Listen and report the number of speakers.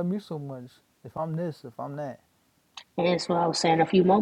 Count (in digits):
2